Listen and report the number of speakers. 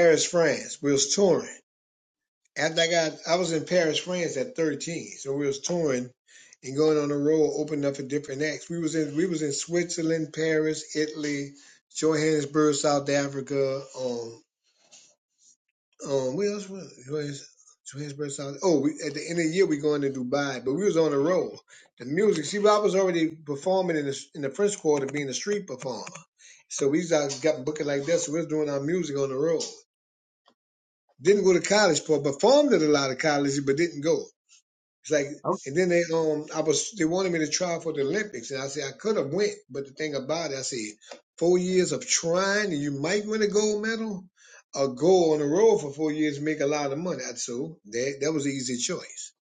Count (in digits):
1